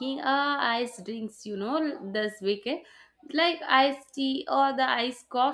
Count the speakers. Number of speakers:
1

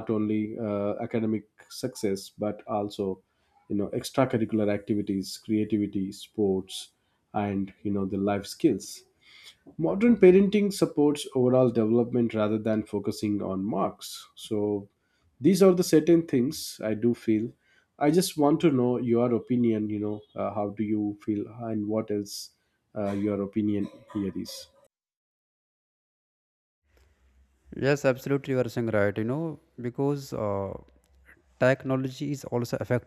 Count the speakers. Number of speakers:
2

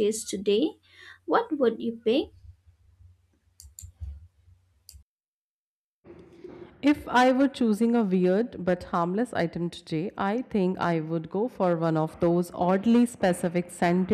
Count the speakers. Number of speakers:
2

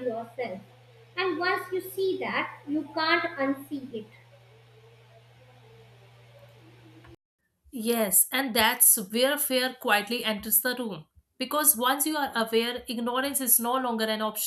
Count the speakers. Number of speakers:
2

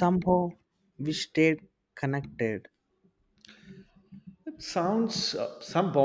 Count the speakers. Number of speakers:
2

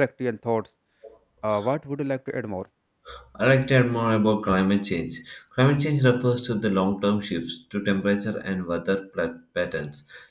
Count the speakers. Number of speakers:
2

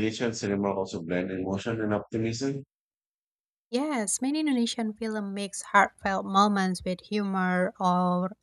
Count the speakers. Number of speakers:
2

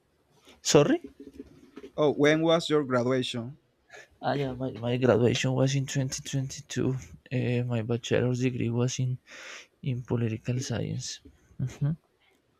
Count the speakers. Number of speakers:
2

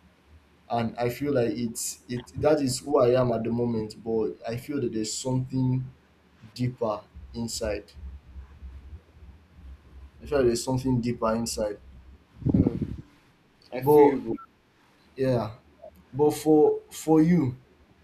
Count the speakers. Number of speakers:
2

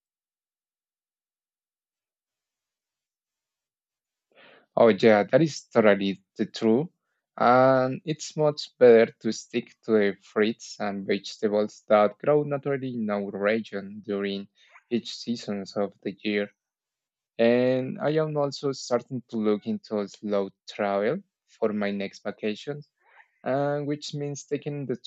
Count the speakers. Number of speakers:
1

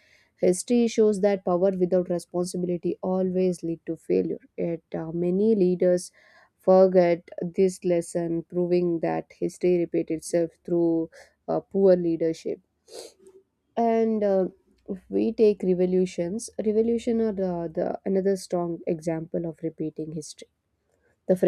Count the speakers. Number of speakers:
1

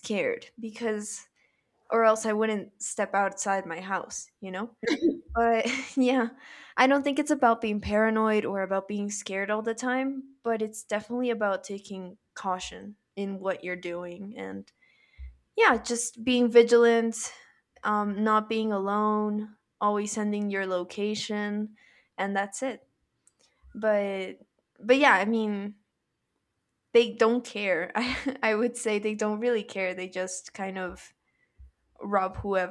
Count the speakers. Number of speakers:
1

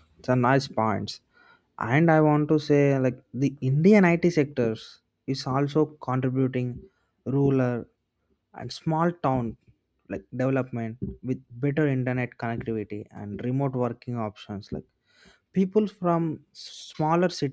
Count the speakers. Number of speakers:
1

